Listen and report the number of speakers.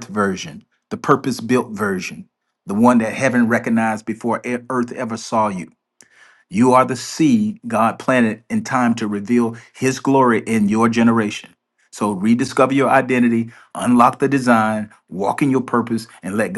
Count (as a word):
one